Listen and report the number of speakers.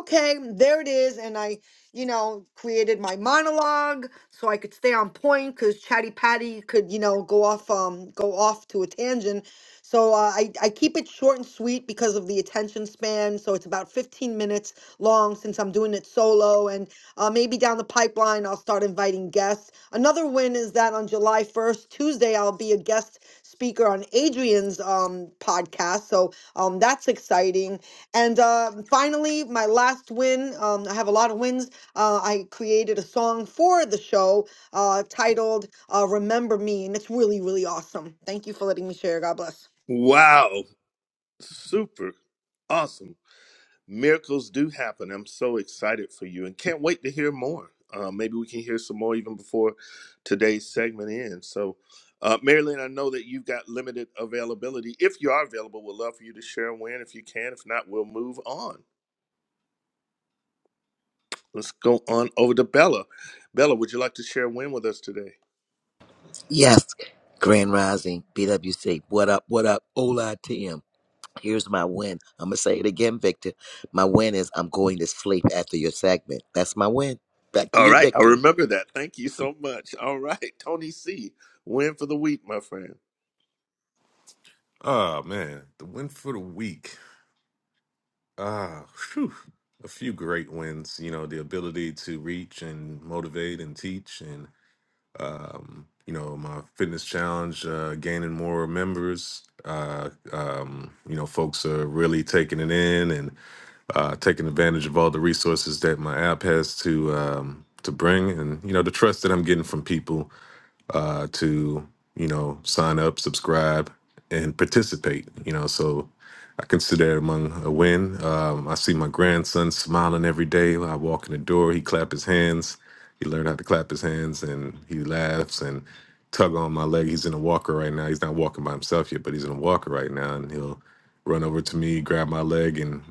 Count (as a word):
four